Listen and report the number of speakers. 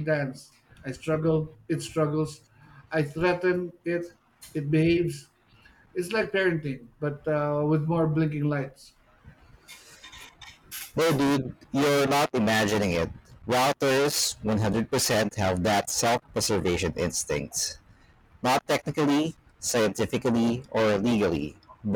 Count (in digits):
2